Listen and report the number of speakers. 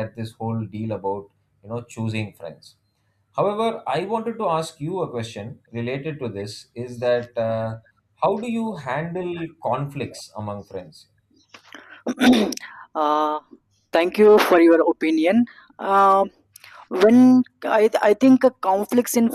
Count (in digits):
2